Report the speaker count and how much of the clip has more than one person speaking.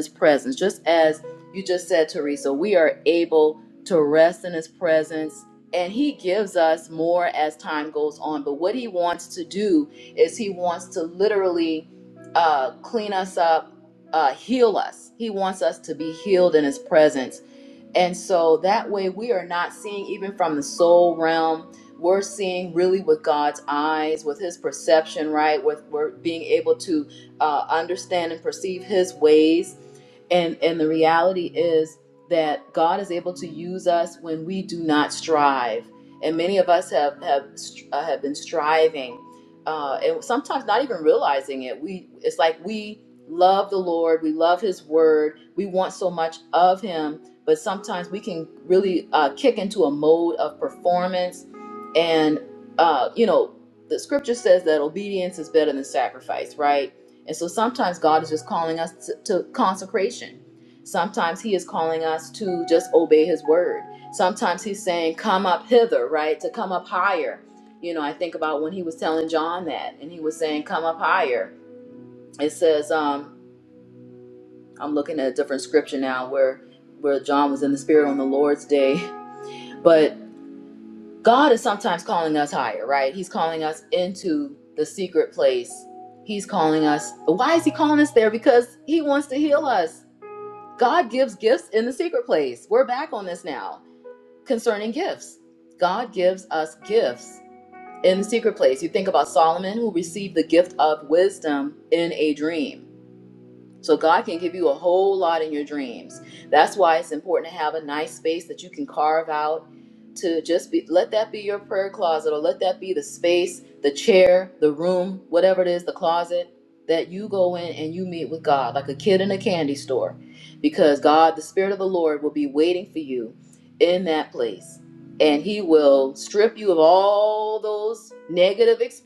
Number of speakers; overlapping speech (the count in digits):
1, no overlap